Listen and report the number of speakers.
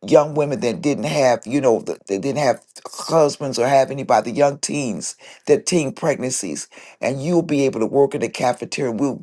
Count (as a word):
one